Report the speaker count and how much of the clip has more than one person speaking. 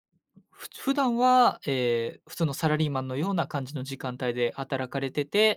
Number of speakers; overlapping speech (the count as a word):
one, no overlap